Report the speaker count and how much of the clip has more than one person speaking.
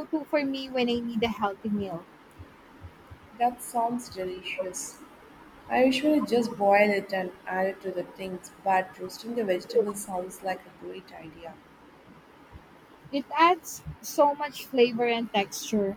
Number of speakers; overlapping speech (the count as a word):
two, no overlap